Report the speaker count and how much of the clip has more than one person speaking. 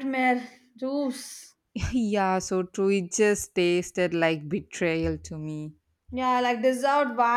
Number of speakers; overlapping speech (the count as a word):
two, no overlap